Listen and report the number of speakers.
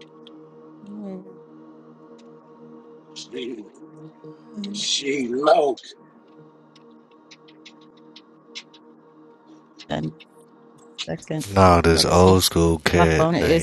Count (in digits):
3